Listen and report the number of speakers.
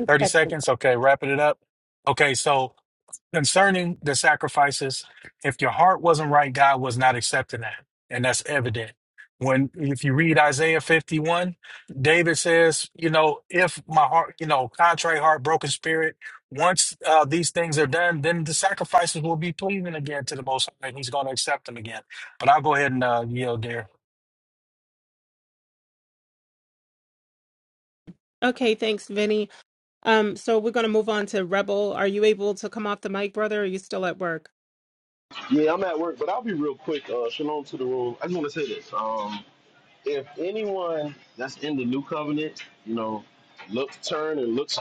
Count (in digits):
3